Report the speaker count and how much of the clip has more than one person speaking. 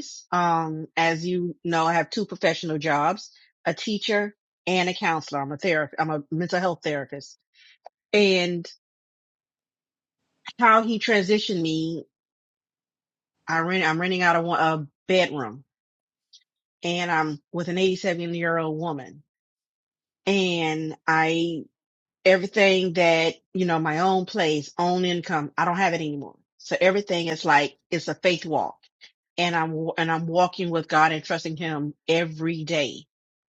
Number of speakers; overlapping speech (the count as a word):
one, no overlap